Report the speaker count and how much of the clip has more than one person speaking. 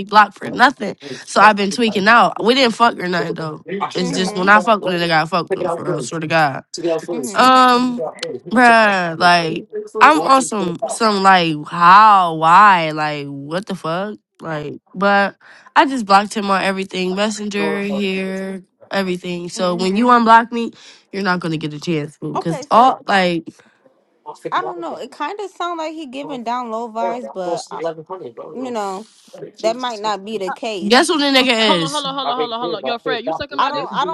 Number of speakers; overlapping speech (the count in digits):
3, about 7%